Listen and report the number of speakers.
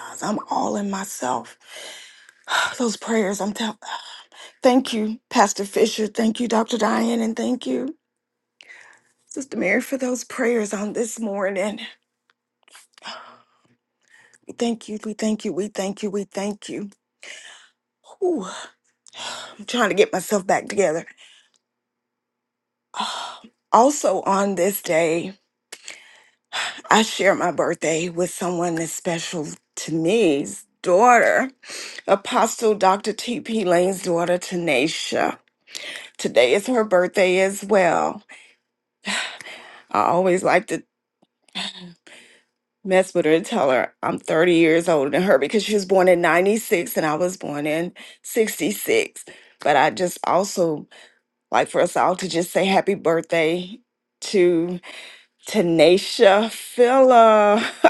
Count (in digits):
1